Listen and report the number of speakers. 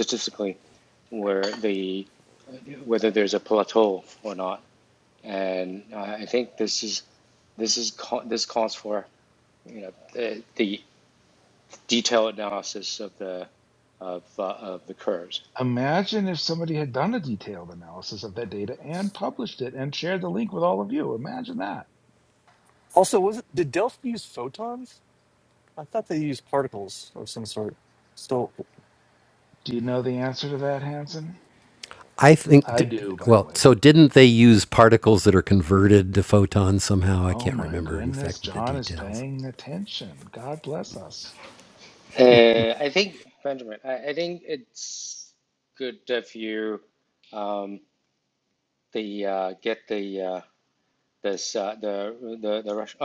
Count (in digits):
4